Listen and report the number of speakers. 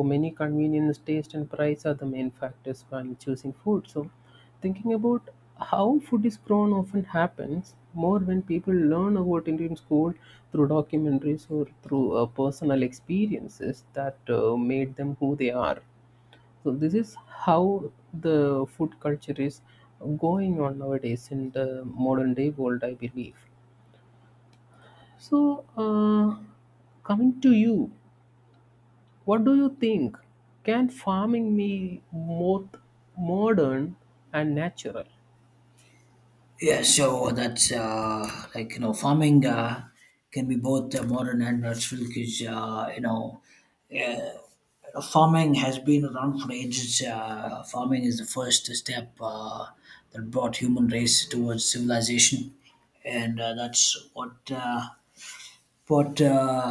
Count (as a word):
two